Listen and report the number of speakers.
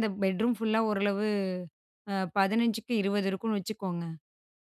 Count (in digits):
1